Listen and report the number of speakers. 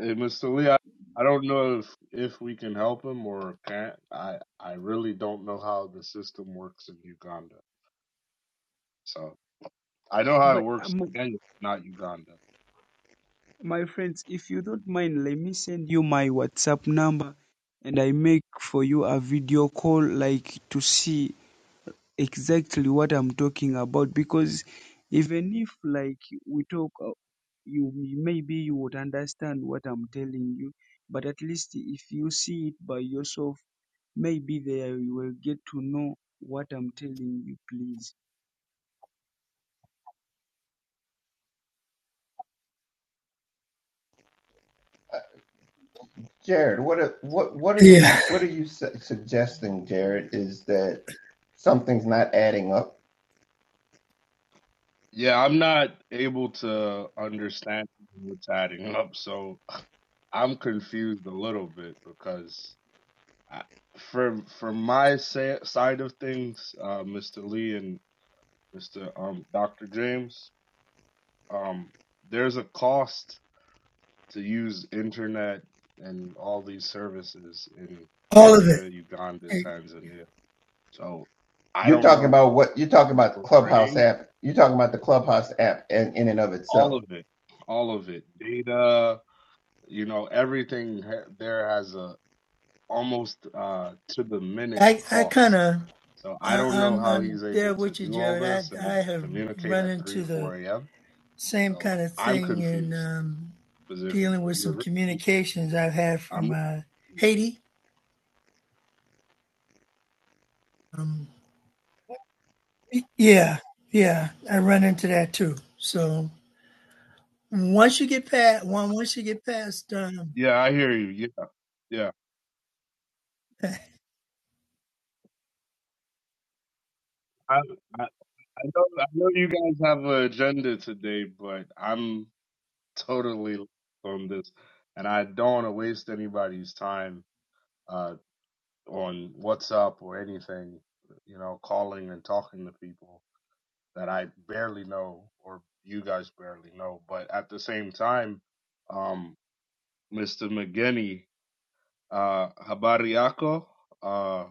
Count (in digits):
4